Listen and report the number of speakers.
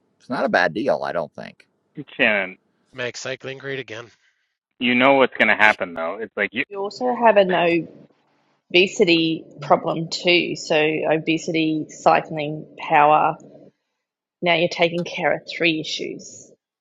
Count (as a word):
four